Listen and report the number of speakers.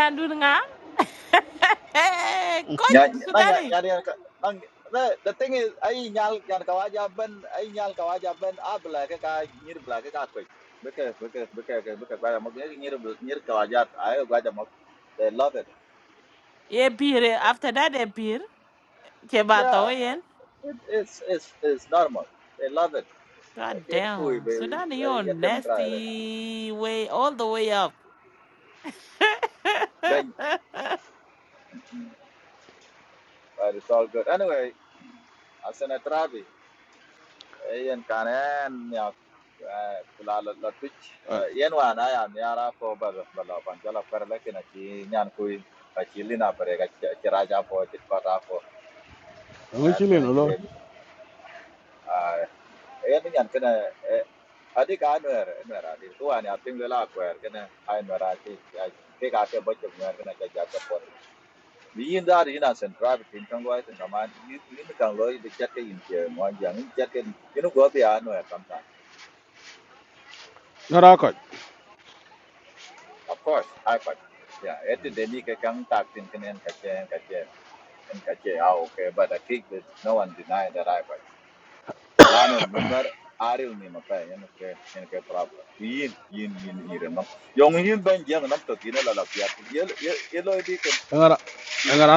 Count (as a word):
three